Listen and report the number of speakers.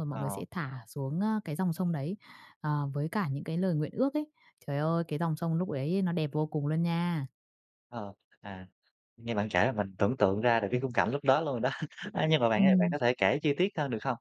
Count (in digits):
2